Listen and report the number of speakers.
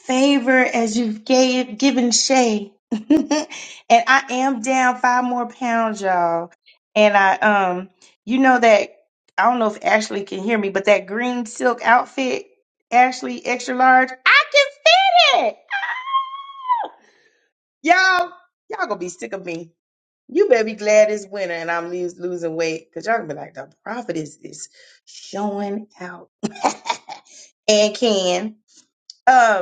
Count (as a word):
one